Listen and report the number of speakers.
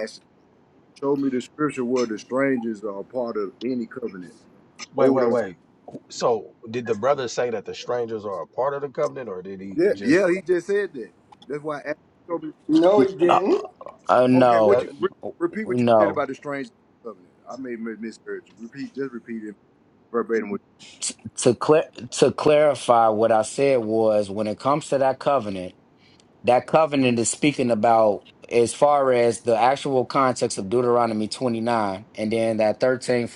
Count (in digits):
4